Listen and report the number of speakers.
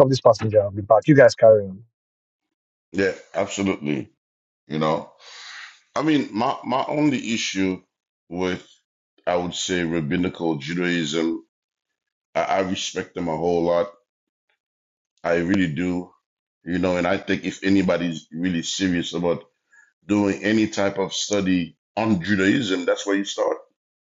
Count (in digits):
2